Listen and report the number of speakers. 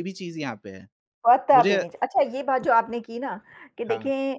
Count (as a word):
two